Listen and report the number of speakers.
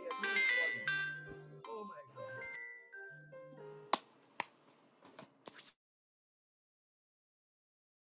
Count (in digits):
0